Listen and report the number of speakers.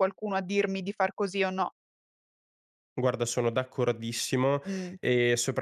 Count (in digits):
2